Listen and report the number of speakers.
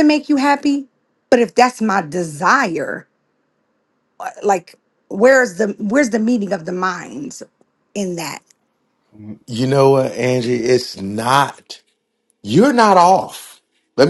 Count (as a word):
two